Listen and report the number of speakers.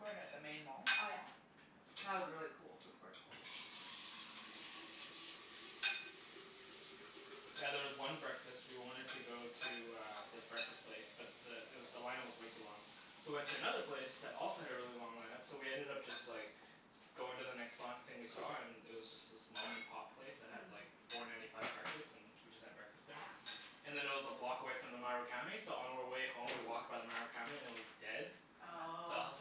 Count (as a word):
three